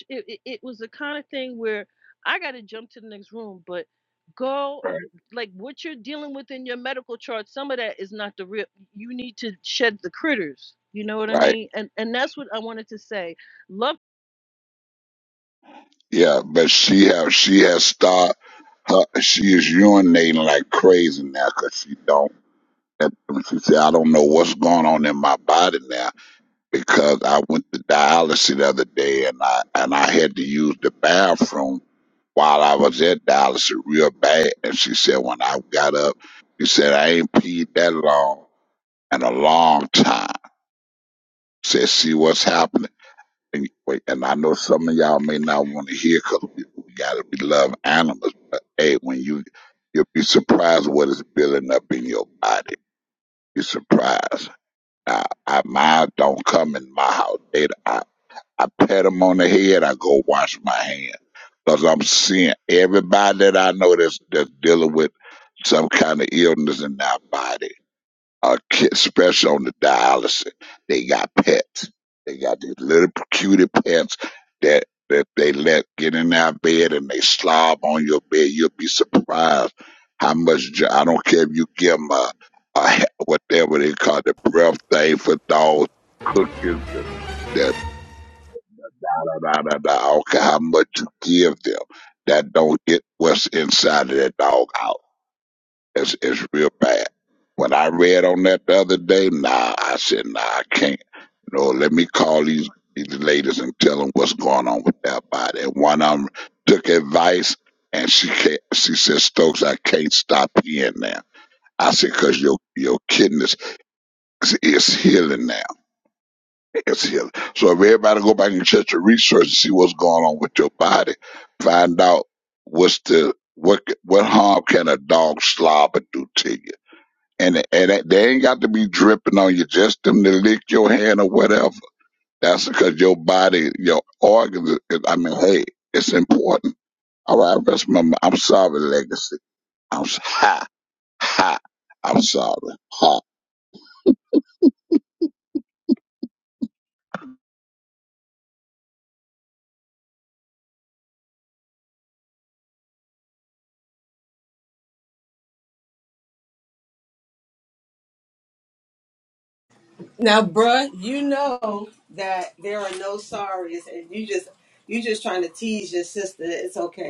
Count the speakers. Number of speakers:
3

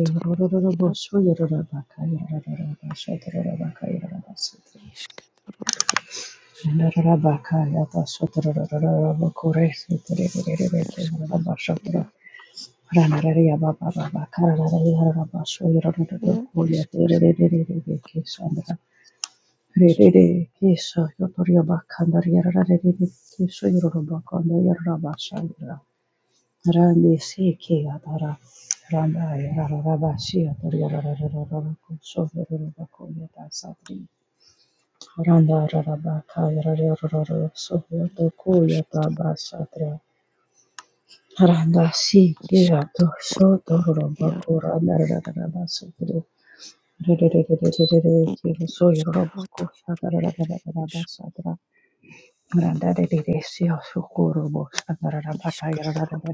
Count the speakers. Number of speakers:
2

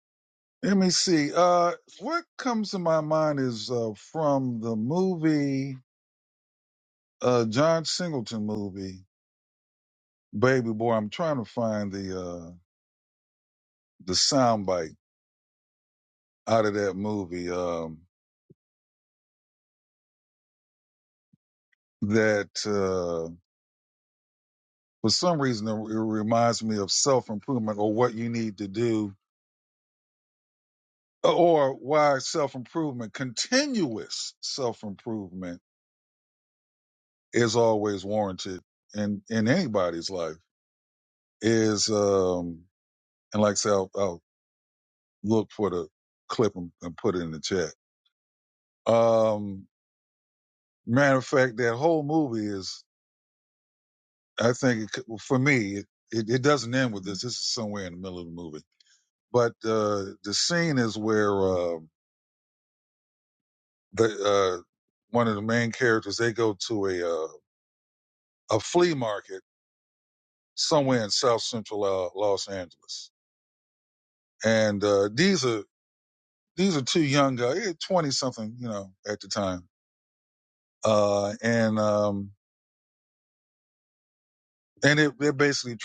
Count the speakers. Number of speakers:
1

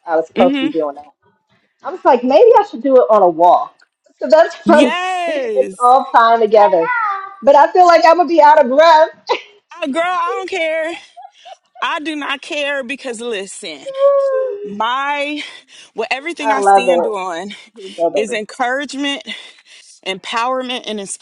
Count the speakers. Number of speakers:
2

